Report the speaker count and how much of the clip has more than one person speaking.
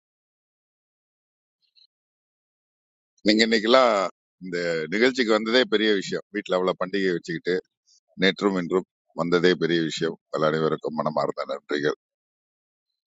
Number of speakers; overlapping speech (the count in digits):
1, no overlap